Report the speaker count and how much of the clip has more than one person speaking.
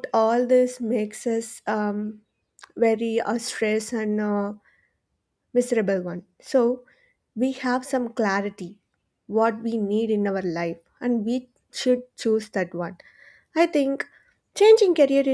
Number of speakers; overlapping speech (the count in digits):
1, no overlap